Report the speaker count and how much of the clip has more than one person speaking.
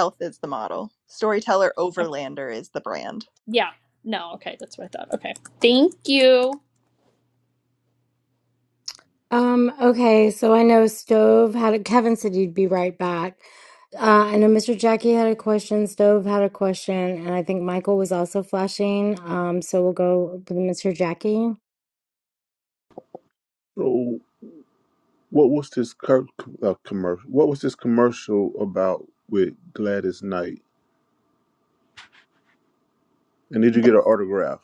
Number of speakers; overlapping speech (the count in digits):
4, under 1%